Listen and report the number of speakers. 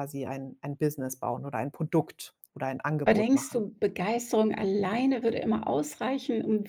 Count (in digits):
2